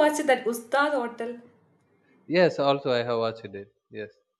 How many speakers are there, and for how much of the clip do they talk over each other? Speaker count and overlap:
two, no overlap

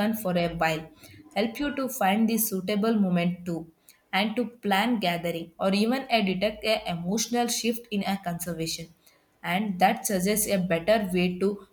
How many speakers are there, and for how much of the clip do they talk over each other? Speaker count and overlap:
one, no overlap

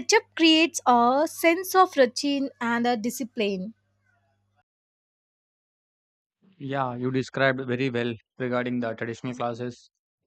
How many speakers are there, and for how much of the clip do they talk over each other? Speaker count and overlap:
two, no overlap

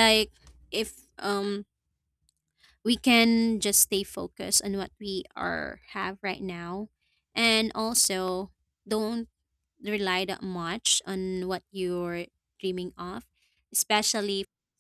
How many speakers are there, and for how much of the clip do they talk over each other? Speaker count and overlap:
one, no overlap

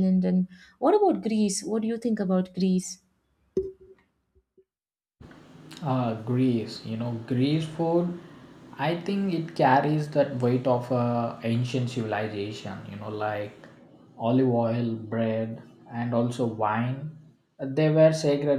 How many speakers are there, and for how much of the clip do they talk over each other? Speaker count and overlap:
two, no overlap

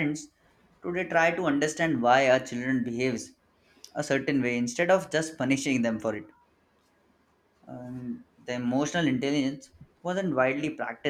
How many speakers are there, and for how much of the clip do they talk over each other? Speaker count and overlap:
one, no overlap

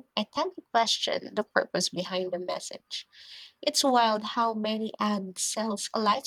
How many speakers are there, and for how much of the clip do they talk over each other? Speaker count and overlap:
one, no overlap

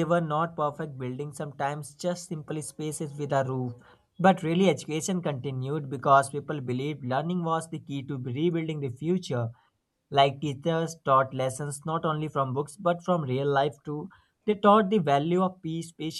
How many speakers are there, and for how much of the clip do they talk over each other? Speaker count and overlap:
one, no overlap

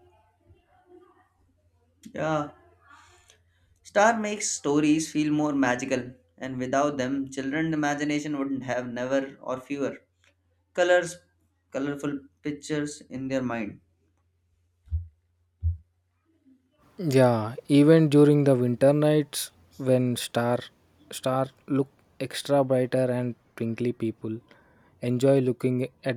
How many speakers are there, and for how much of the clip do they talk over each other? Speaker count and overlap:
two, no overlap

